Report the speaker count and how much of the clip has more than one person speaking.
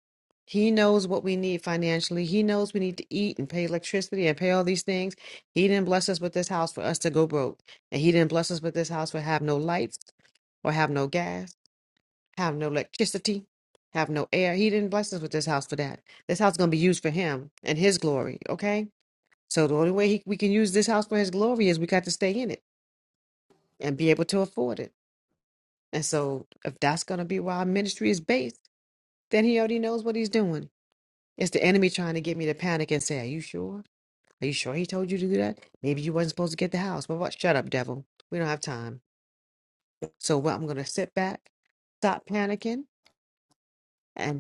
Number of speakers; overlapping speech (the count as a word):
one, no overlap